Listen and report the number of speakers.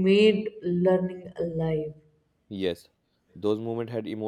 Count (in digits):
2